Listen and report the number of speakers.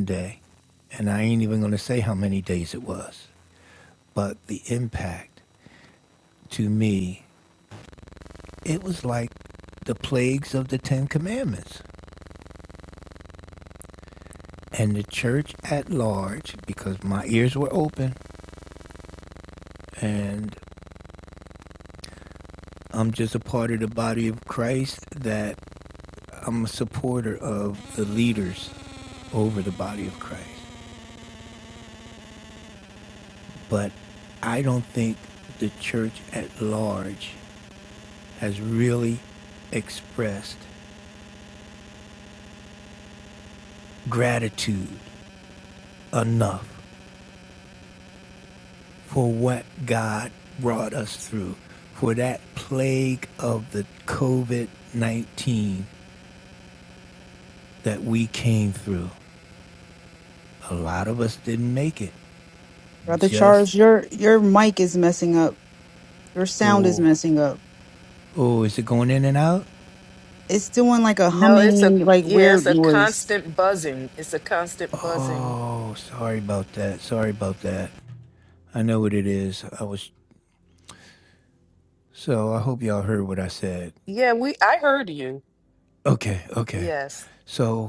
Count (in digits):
3